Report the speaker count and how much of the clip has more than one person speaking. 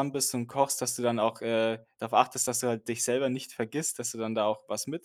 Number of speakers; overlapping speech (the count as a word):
one, no overlap